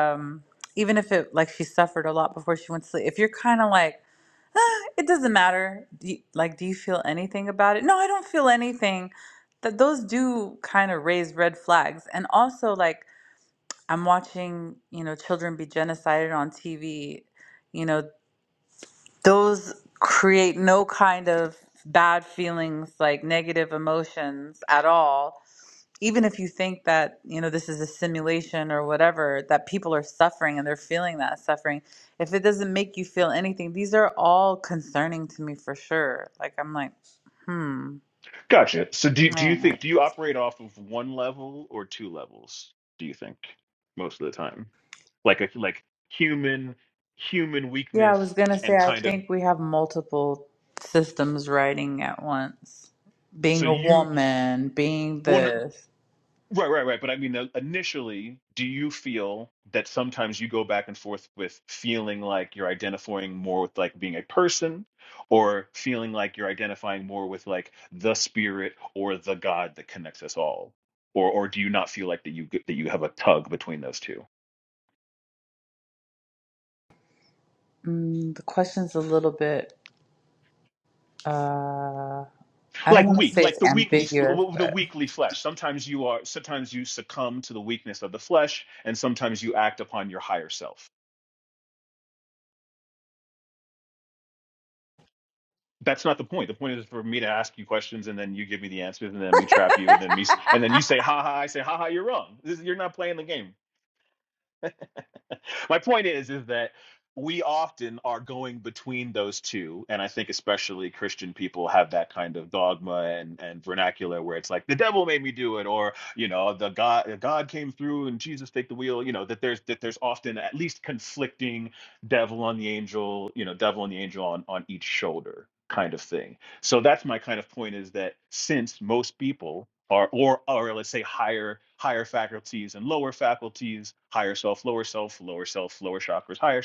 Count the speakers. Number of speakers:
two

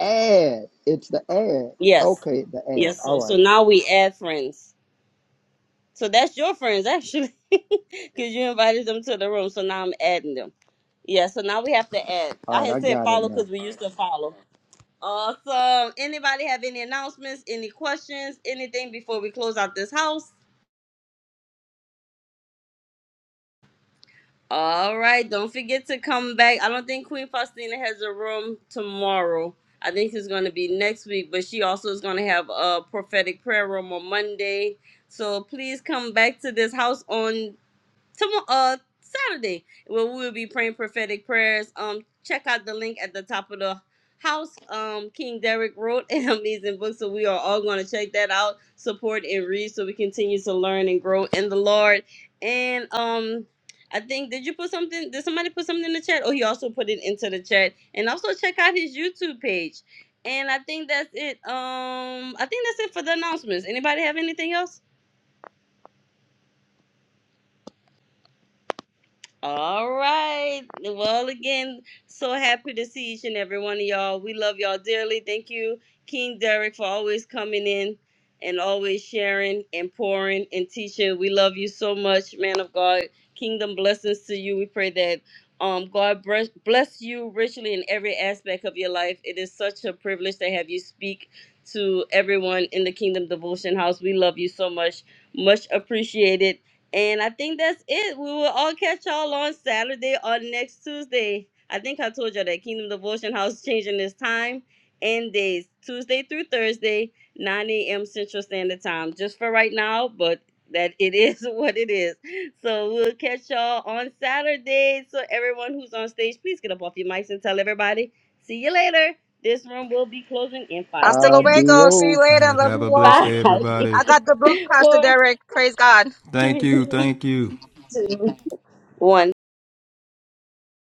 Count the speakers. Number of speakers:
four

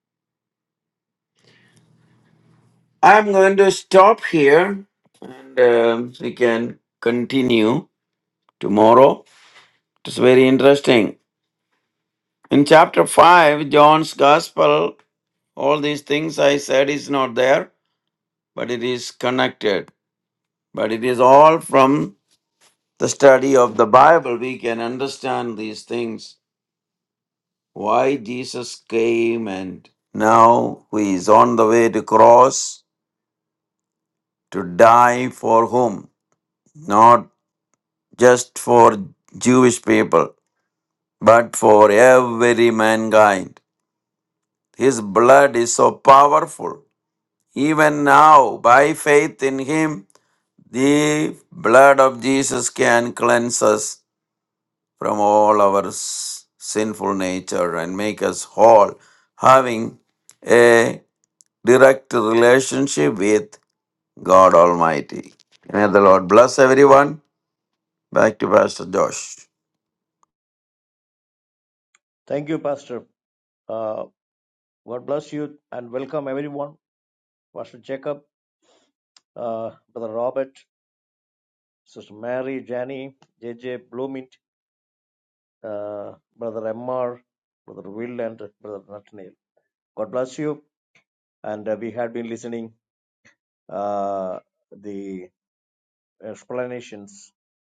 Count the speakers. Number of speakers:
two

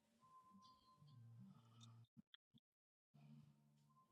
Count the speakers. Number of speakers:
zero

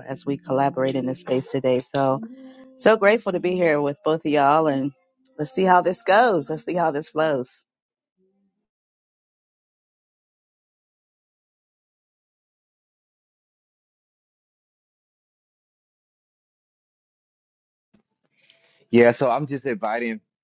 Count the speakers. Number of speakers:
two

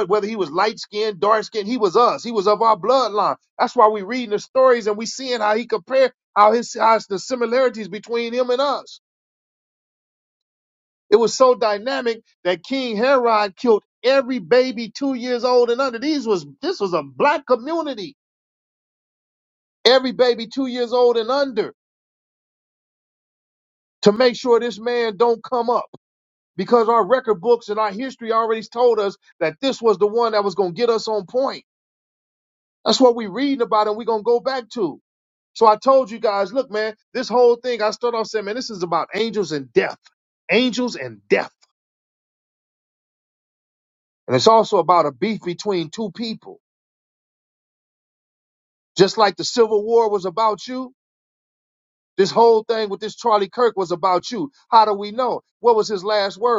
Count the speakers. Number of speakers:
one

